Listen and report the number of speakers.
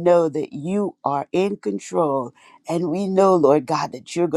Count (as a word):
one